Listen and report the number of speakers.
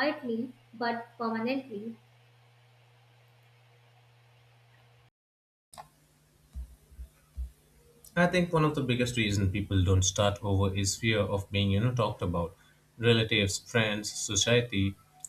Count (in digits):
2